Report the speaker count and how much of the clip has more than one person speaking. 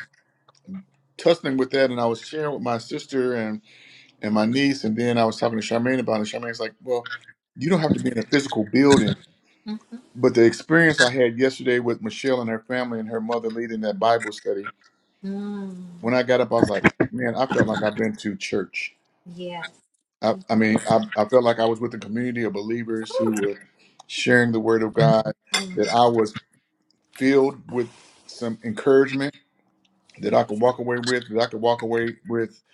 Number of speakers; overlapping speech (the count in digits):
2, under 1%